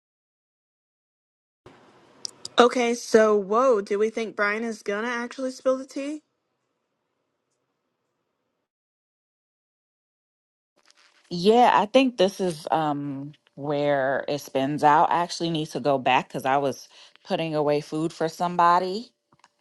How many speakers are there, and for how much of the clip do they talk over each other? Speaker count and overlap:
two, no overlap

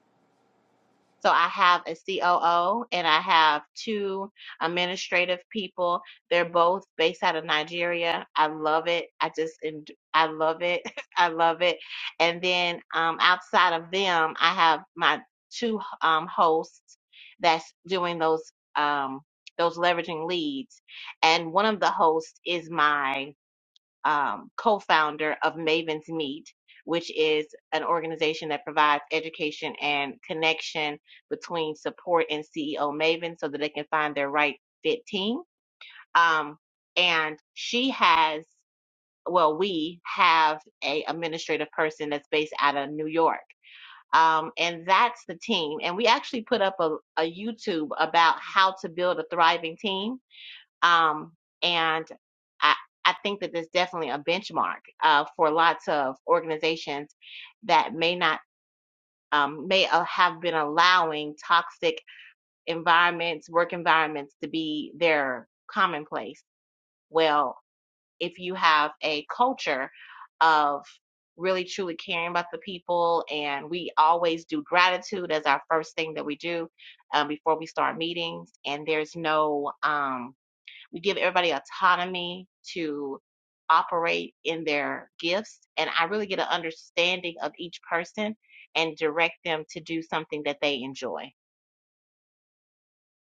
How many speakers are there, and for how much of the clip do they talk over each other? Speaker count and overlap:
one, no overlap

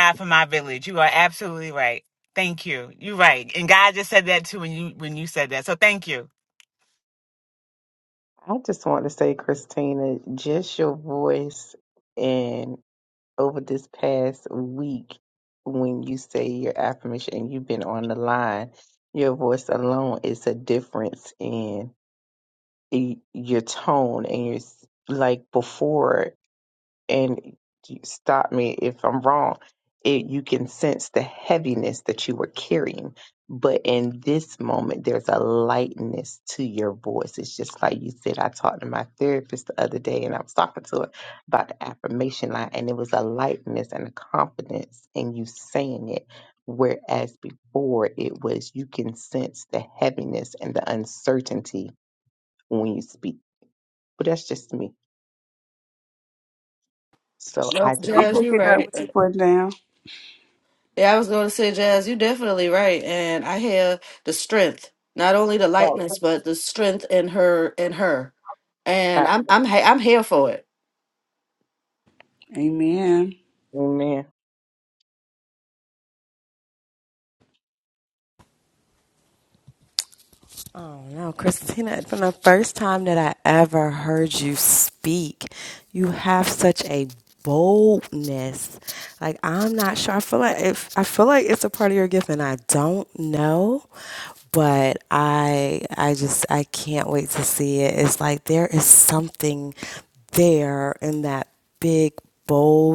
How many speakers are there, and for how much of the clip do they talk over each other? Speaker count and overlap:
five, about 1%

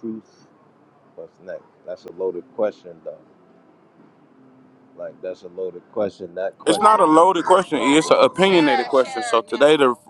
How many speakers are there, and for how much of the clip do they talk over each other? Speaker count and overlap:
two, about 14%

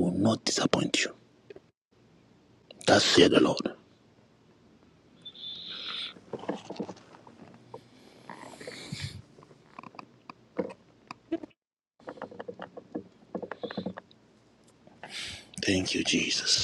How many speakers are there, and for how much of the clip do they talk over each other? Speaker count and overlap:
one, no overlap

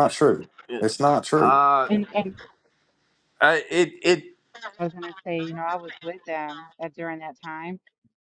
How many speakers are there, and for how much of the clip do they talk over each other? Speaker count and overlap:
three, about 2%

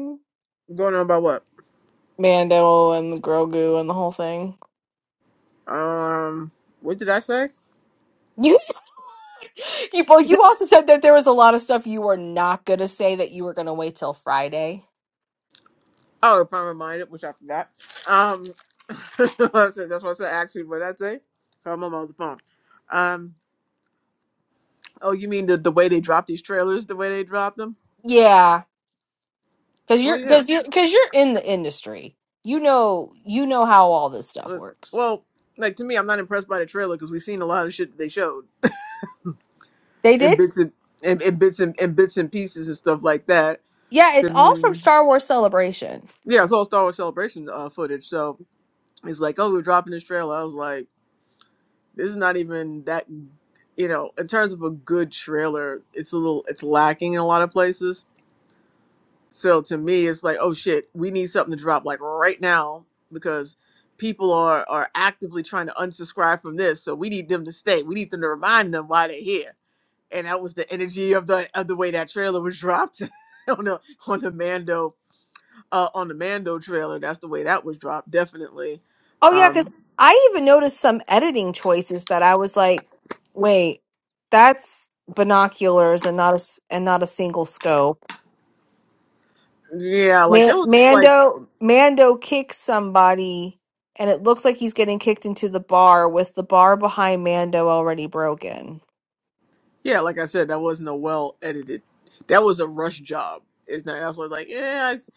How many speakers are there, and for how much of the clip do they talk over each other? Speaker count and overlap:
two, about 2%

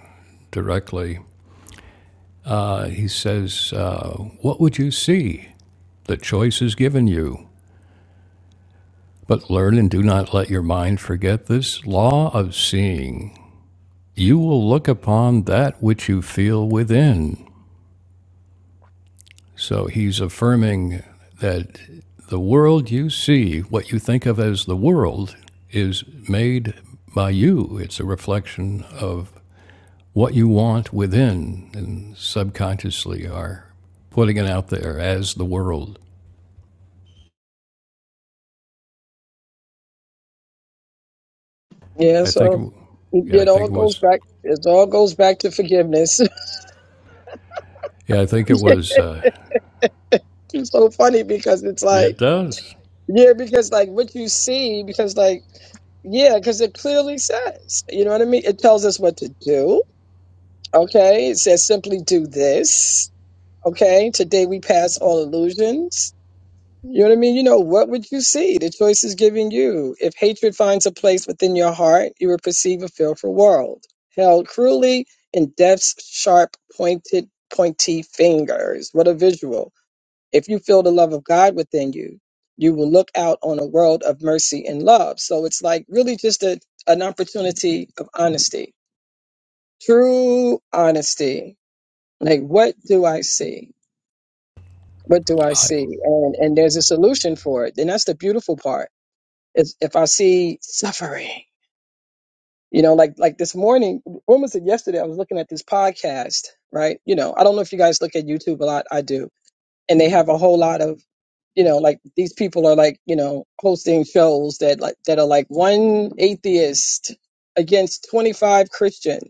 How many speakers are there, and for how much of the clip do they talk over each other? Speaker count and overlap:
two, about 1%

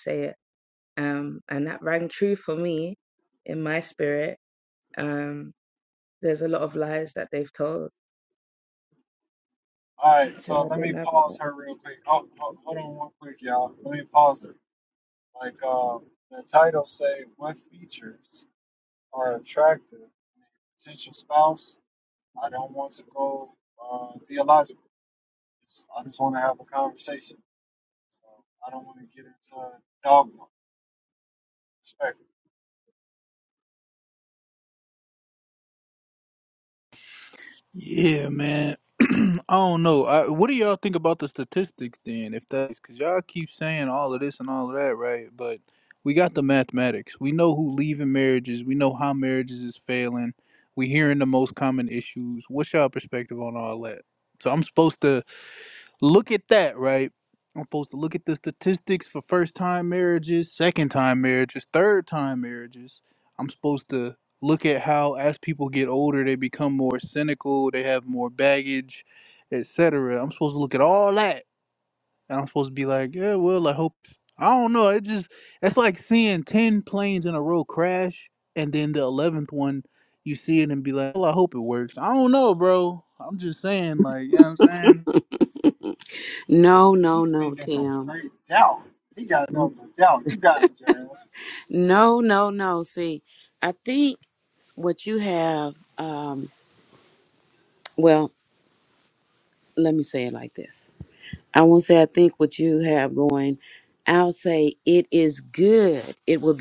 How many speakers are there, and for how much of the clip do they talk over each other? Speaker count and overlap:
four, about 2%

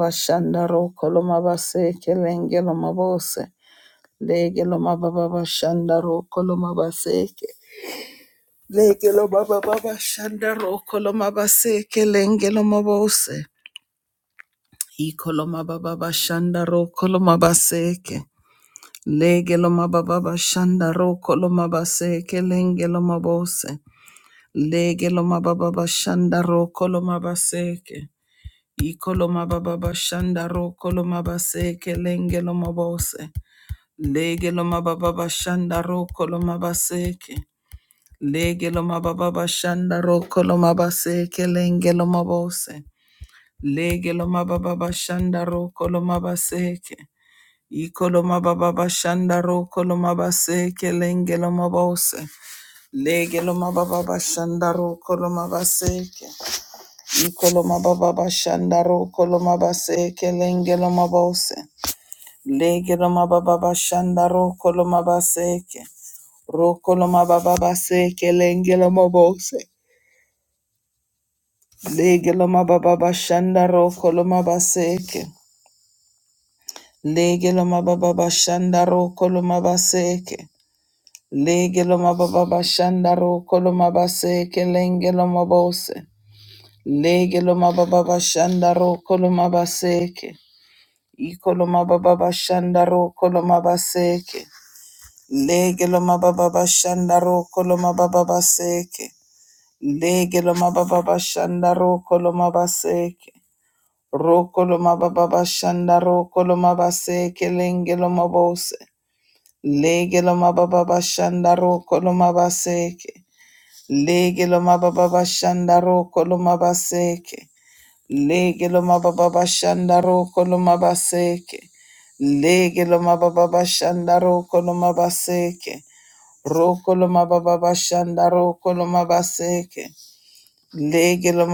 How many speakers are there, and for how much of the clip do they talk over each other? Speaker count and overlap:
one, no overlap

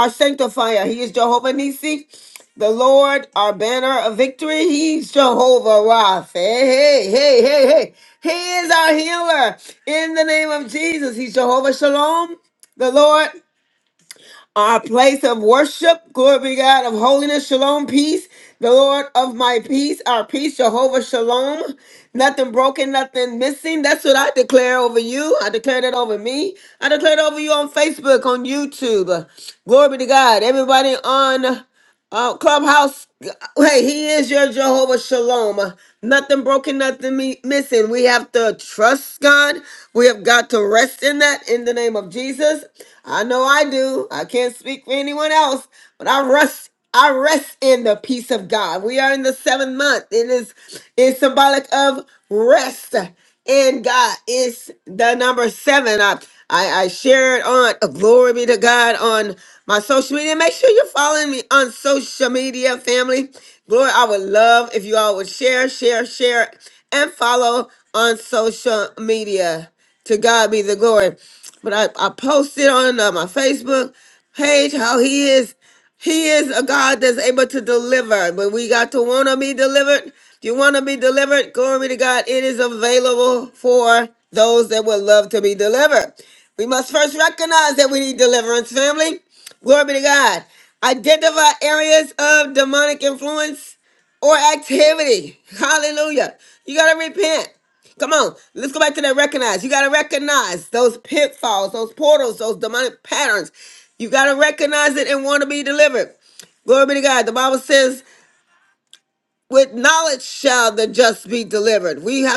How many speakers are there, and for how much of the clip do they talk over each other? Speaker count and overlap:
one, no overlap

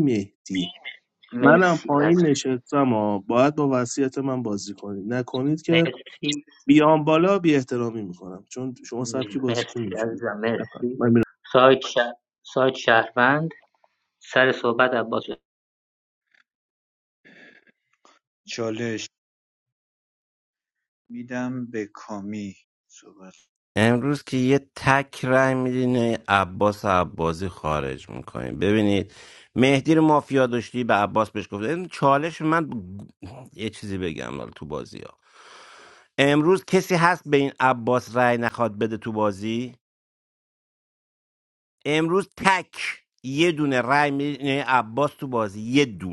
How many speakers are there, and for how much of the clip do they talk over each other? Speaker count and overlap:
four, about 5%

